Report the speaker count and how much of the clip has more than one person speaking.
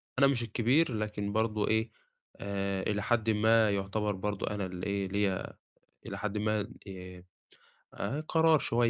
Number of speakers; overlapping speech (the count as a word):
one, no overlap